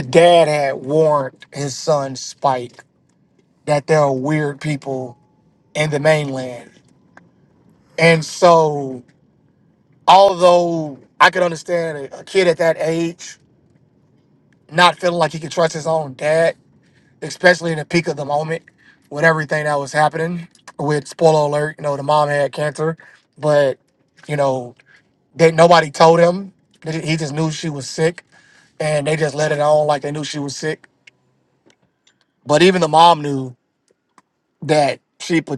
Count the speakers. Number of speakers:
1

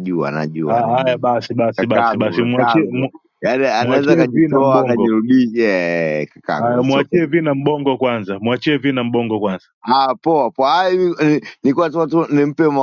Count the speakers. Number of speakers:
2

